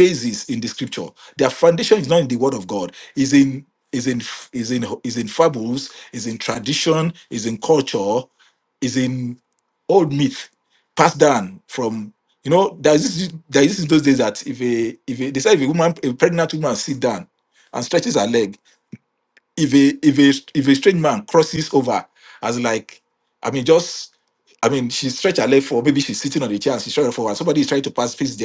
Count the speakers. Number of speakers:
1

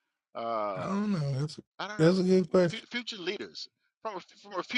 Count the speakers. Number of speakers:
2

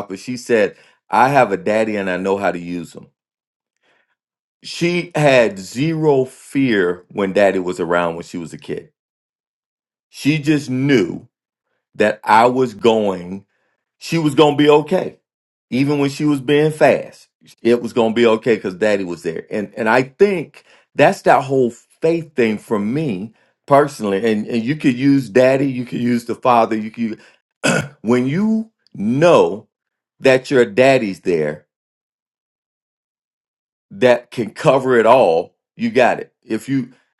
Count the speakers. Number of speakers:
1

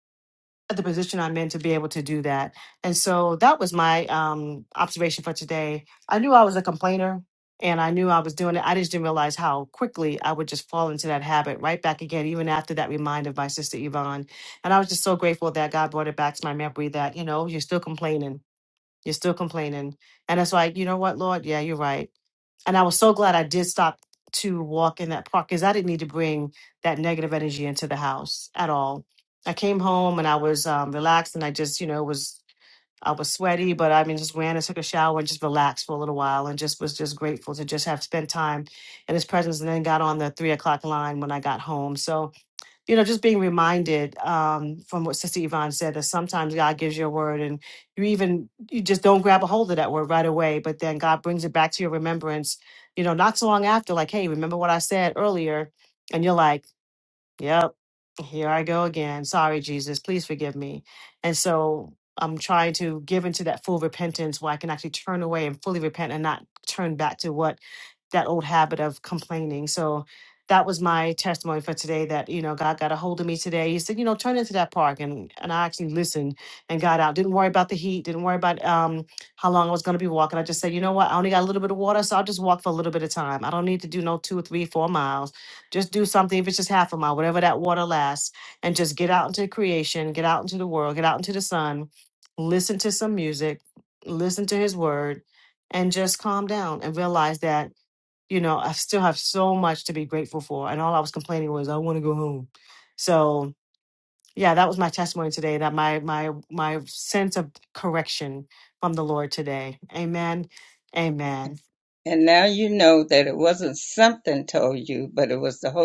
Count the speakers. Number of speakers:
2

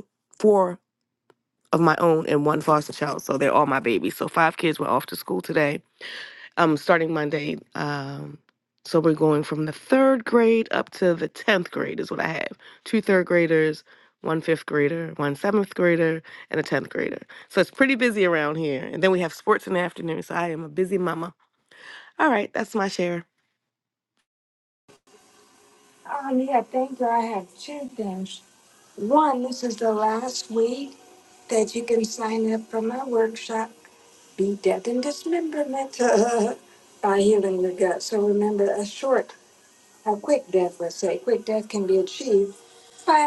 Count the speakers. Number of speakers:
2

